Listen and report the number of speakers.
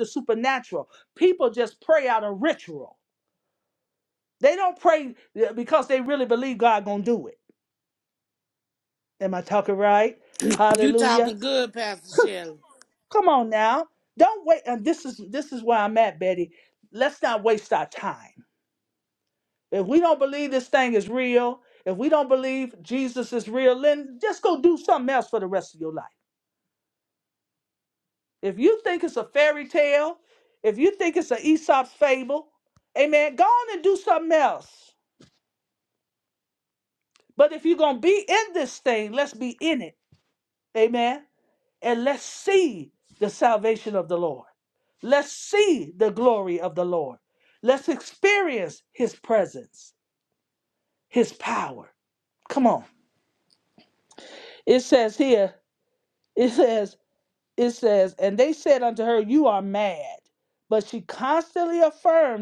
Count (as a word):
two